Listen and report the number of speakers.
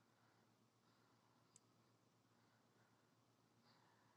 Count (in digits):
0